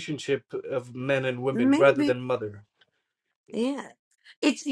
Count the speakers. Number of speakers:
2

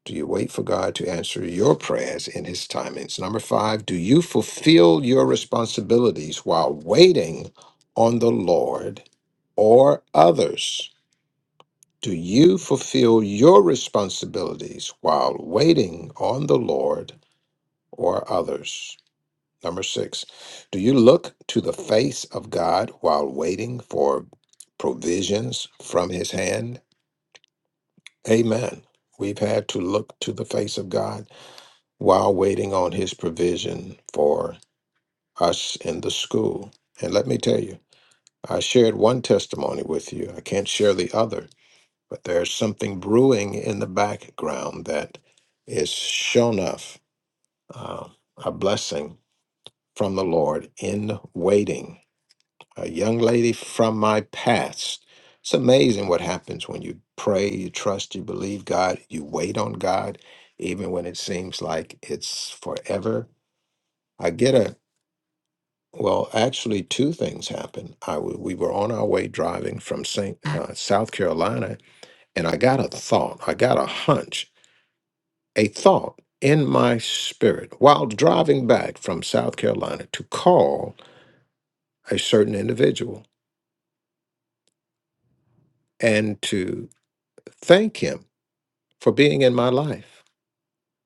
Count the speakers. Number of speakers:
1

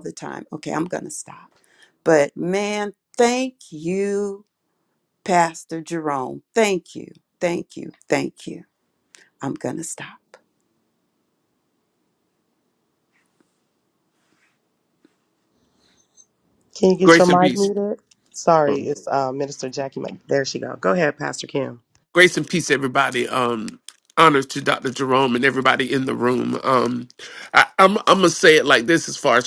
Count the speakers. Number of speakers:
3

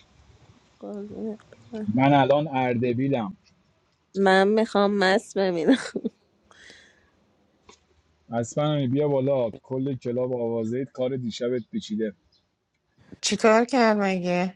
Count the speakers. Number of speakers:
3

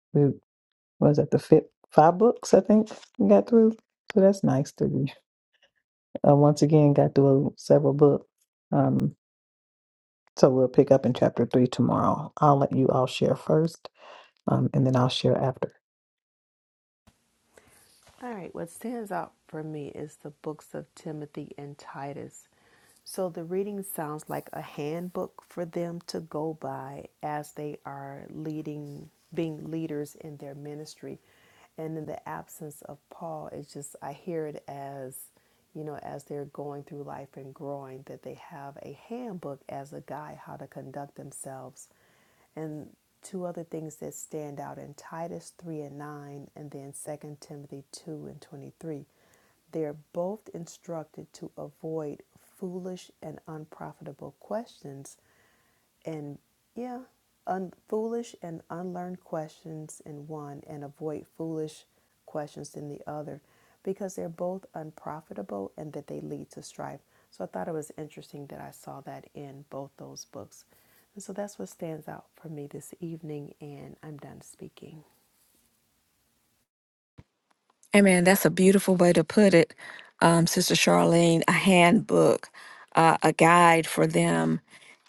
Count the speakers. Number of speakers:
3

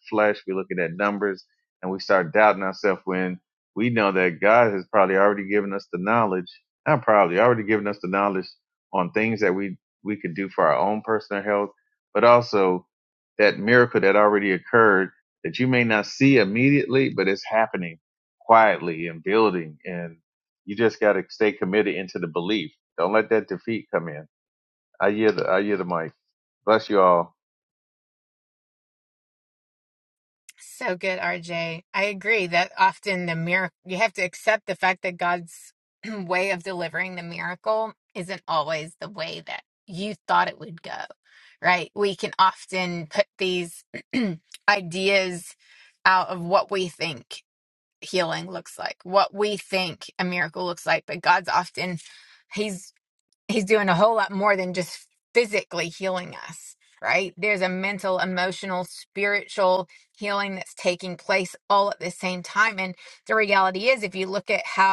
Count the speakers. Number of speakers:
2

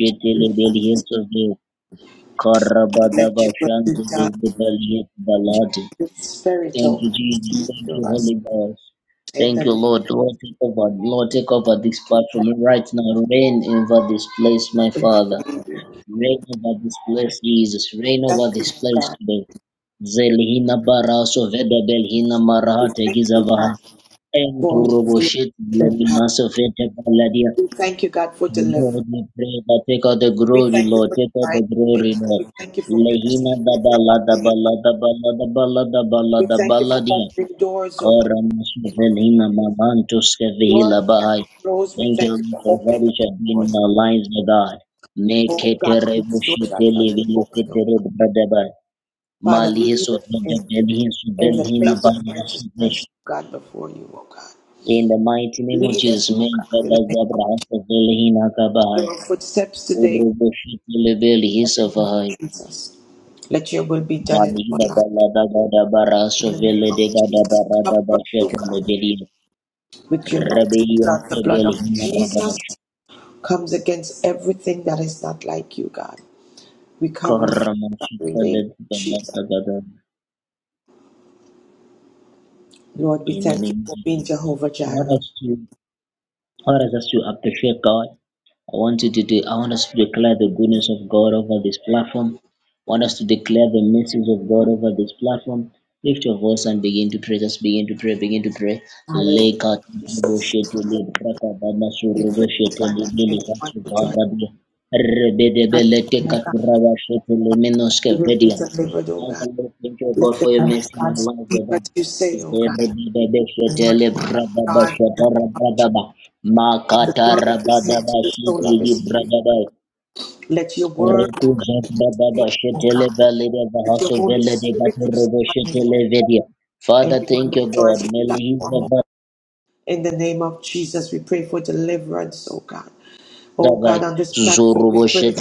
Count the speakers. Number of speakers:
2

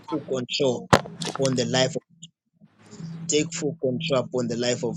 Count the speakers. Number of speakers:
1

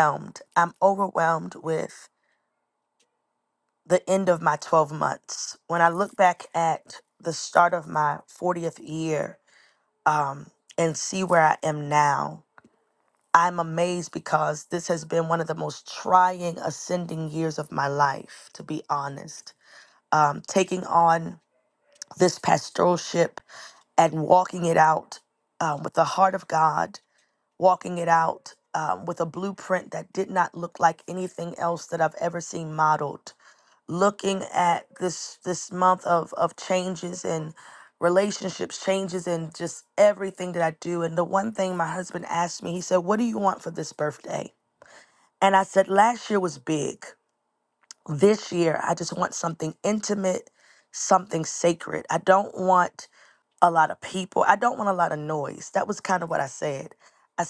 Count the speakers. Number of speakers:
1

